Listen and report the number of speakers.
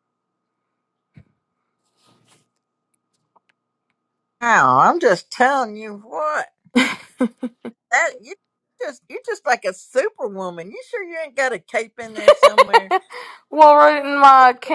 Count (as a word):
two